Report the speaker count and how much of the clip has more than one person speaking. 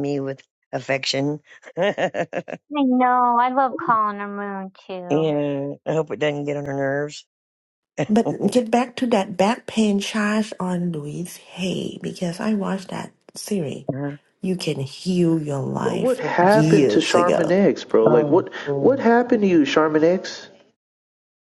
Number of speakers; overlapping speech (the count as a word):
four, about 13%